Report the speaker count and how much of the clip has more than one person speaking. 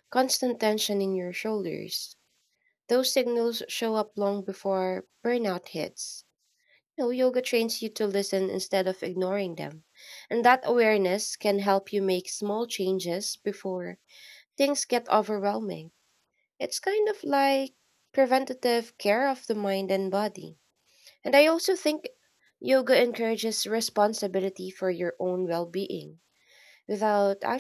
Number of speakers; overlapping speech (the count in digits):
1, no overlap